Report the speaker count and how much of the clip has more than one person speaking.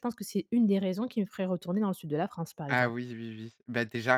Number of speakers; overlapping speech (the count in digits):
2, about 5%